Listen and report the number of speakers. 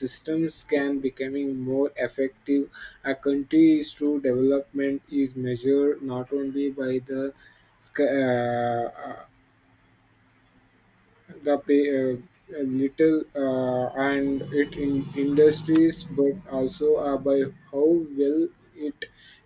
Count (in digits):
1